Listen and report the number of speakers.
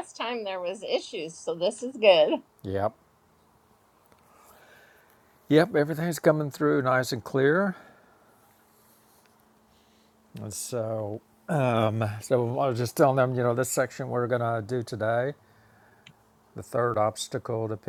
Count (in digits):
2